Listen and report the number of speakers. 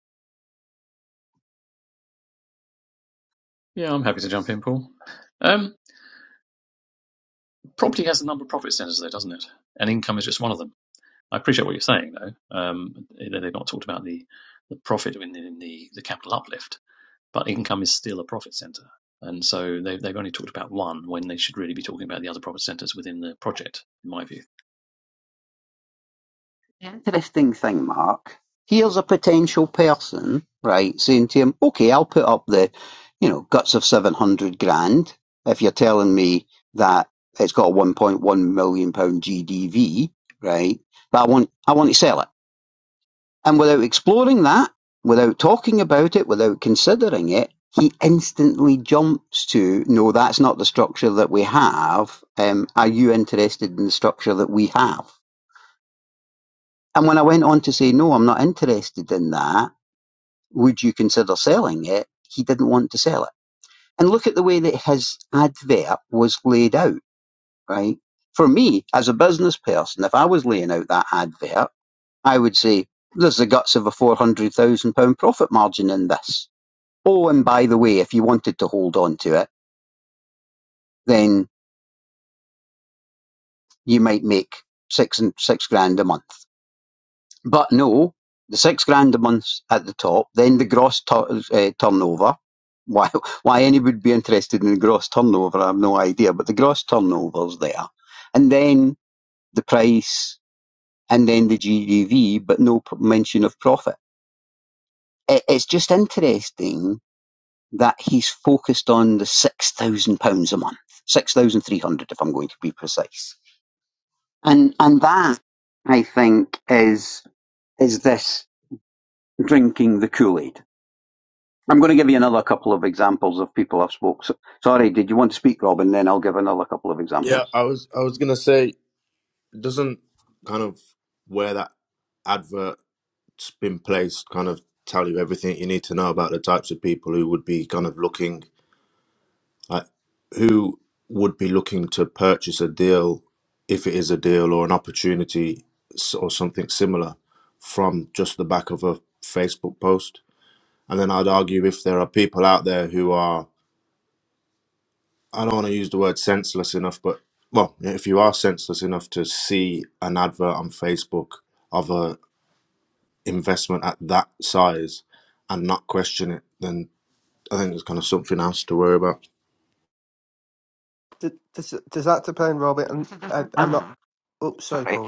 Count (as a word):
four